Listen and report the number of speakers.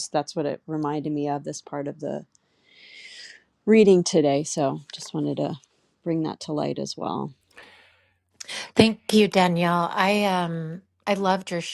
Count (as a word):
two